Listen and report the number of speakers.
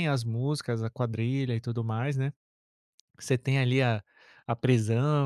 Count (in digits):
1